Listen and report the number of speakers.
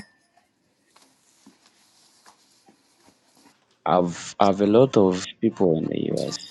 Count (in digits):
1